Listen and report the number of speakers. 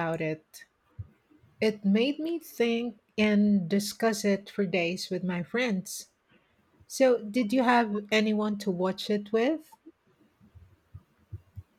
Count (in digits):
1